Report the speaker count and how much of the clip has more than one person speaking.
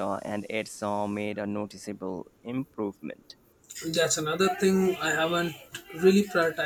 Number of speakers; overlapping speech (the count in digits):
2, no overlap